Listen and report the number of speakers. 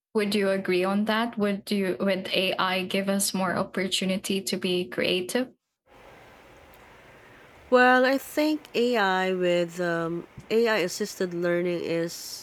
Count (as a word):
two